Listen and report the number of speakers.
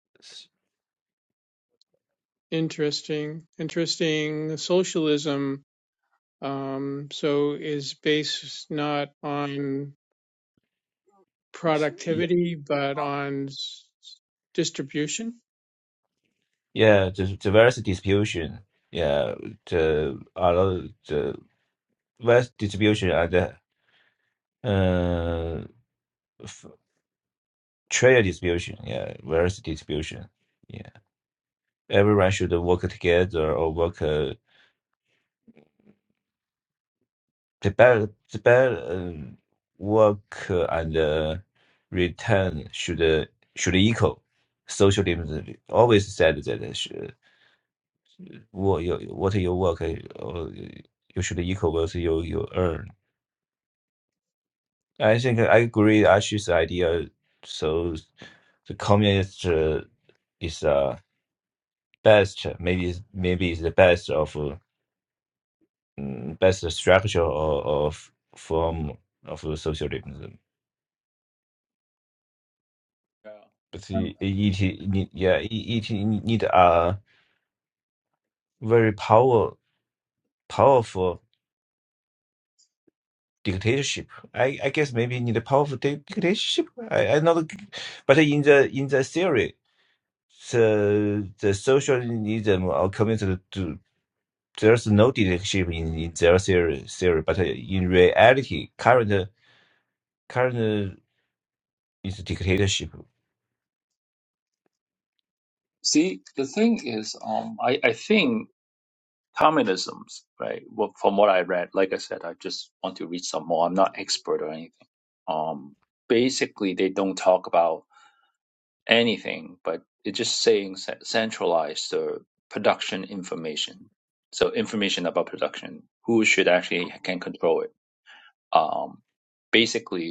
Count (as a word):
three